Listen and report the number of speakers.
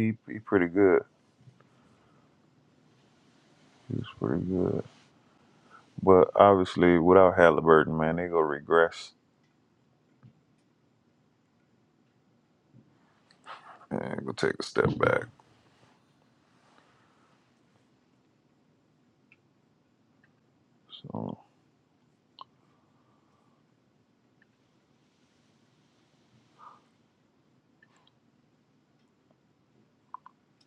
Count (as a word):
one